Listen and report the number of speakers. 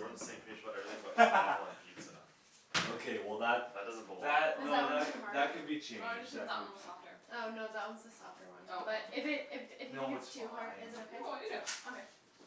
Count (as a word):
four